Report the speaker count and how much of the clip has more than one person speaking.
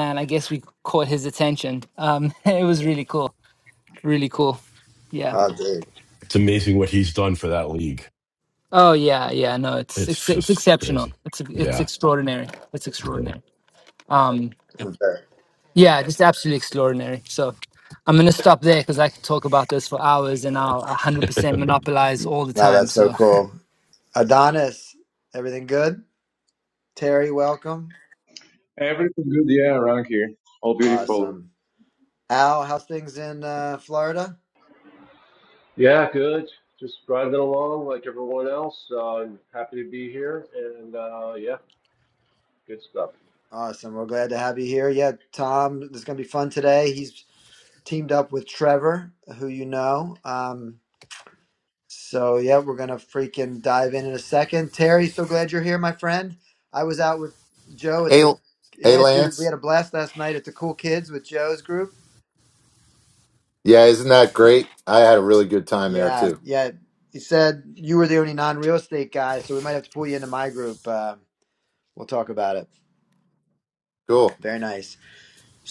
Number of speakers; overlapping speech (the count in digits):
6, about 5%